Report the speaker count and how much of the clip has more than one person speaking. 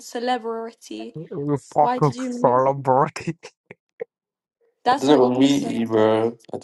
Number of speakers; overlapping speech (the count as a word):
three, about 27%